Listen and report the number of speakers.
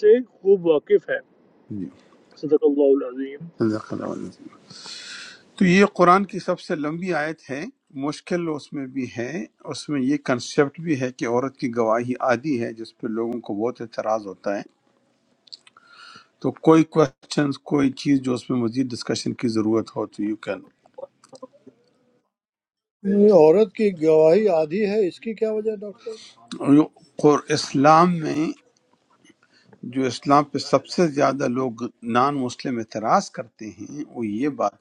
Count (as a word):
three